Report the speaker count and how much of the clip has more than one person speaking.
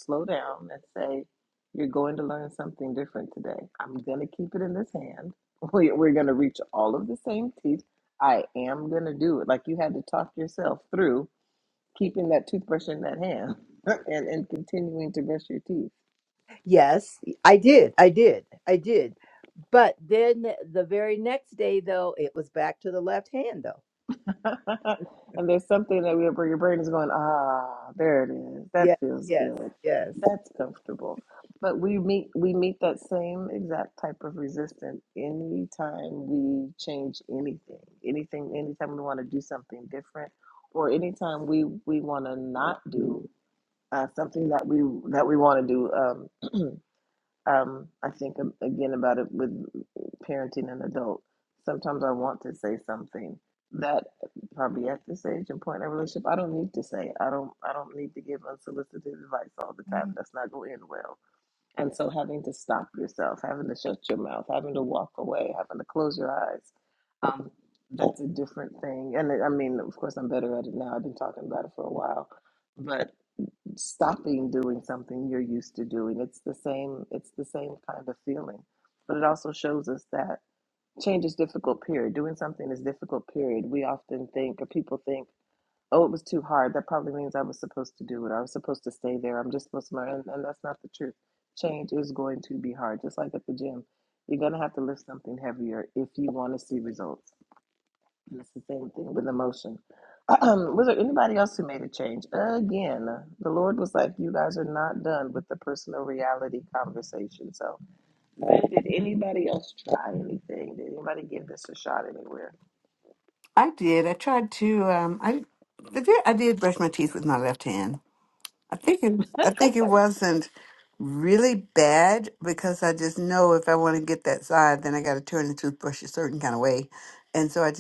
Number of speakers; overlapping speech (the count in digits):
3, about 1%